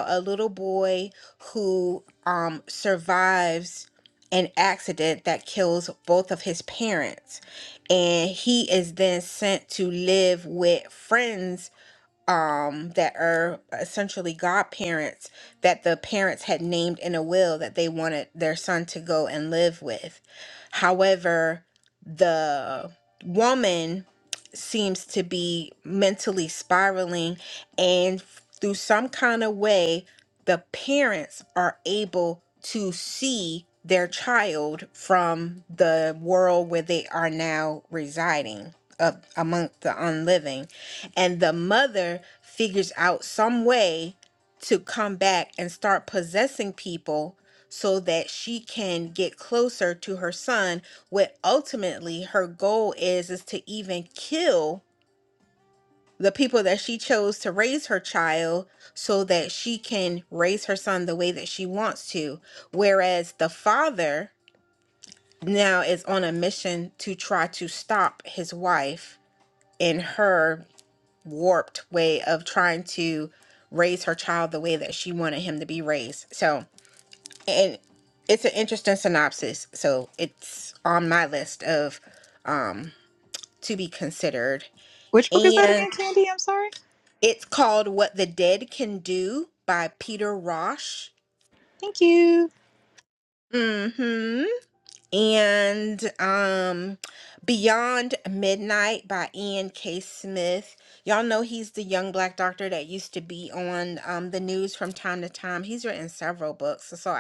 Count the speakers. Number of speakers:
two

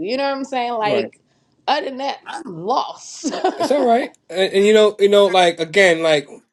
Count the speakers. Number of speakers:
two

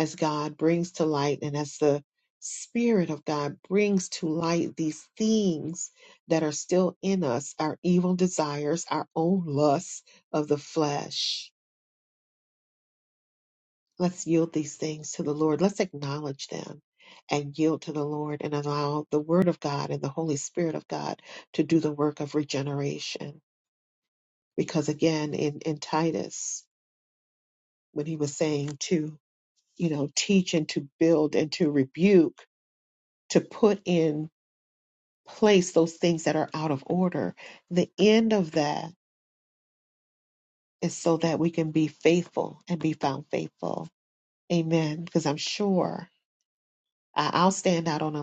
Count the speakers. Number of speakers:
one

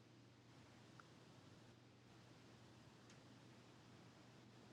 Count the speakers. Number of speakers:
zero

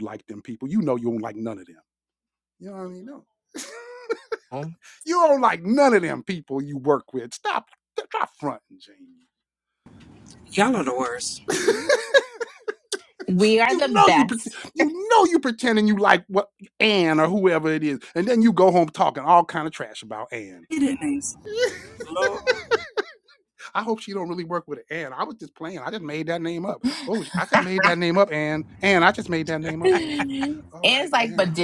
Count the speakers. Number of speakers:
three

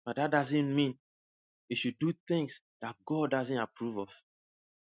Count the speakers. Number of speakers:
one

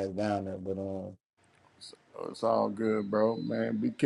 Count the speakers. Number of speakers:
two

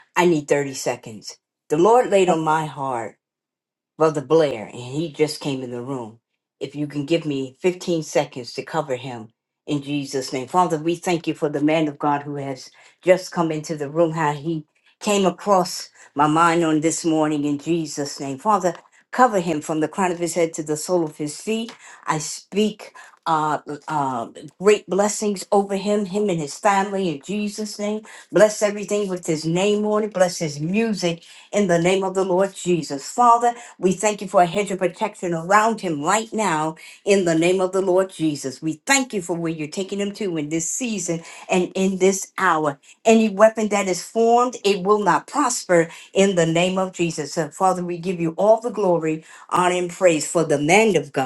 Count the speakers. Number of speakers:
one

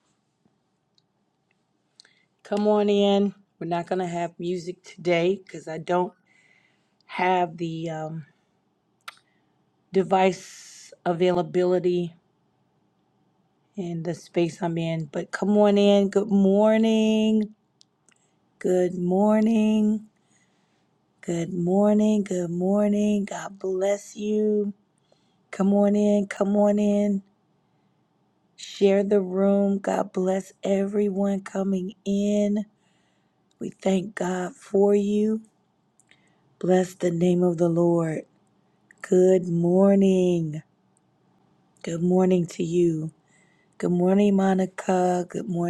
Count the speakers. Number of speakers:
one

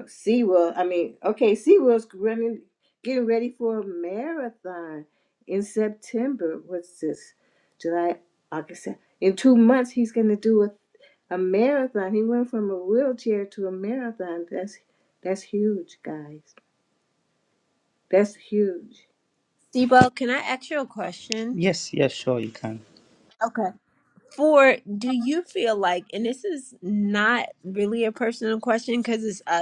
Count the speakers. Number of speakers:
three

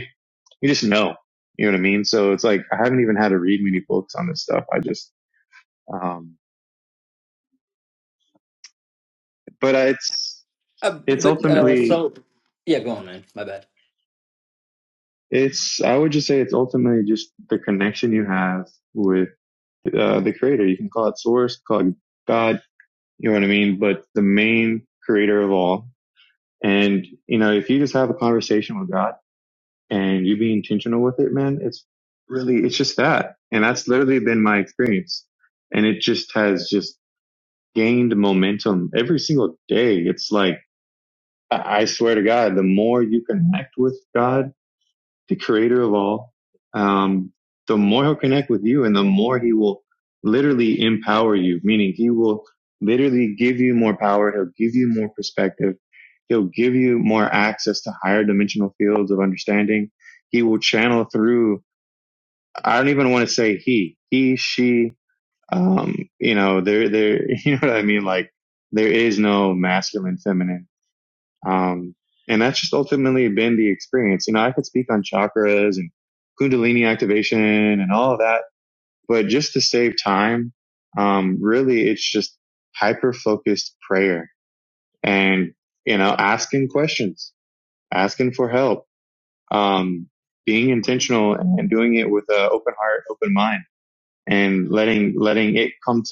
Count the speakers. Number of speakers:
two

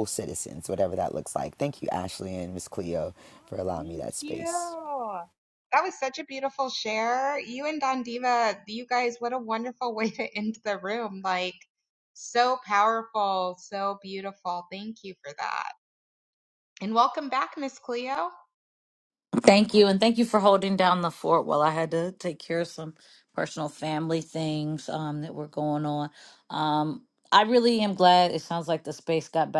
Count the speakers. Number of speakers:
three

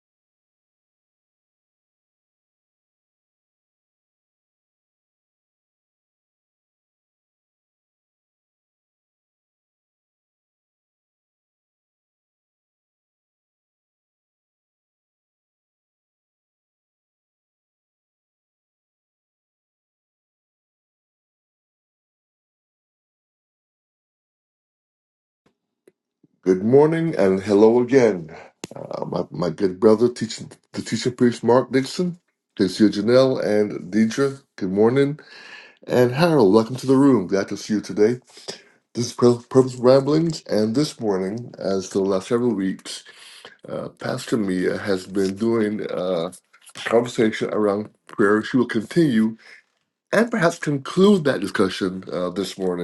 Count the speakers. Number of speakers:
one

